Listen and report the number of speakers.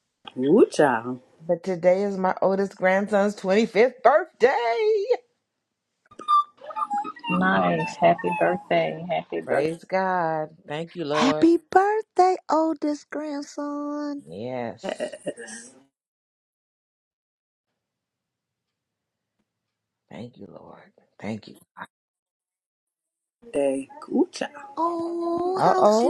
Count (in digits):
4